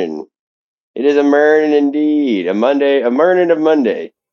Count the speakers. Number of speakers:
one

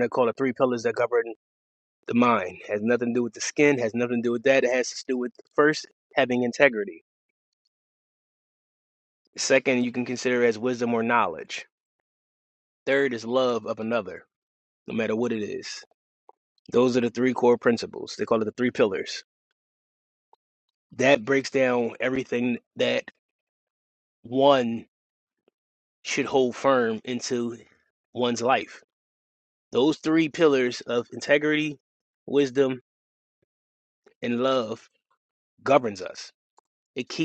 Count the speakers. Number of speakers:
one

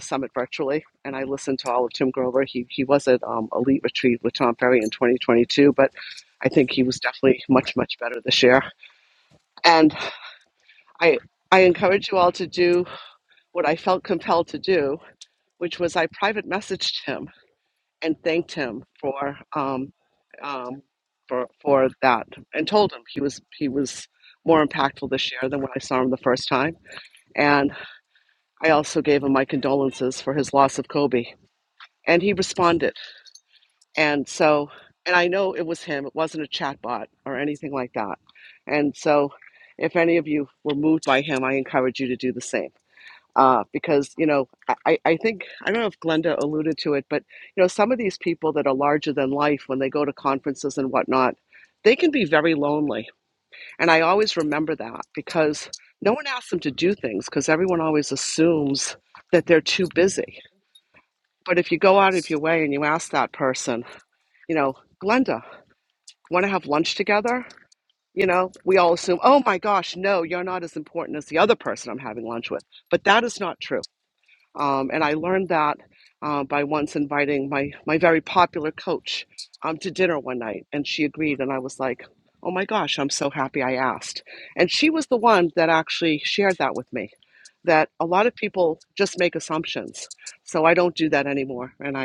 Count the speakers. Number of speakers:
one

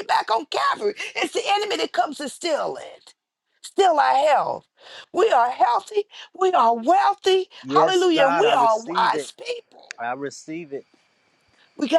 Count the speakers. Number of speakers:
two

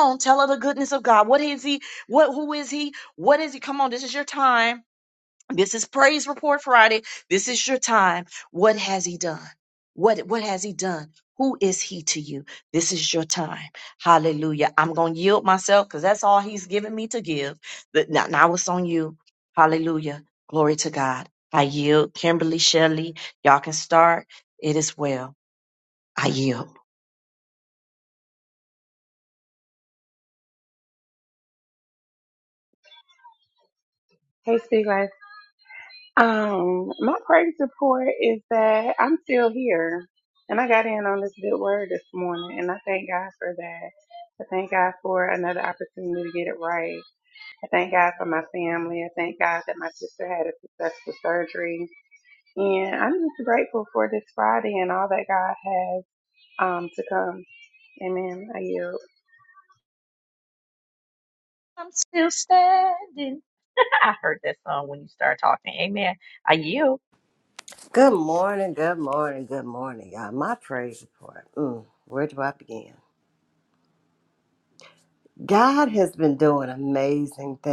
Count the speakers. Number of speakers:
three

